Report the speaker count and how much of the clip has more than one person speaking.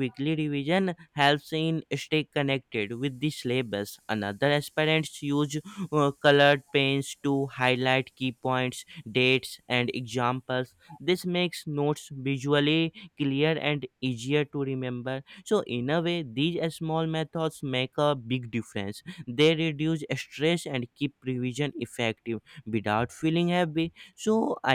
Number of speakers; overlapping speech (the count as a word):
one, no overlap